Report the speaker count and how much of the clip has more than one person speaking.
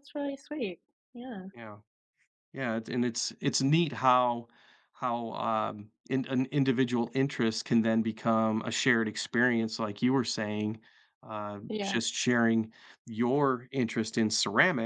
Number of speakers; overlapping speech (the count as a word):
two, about 2%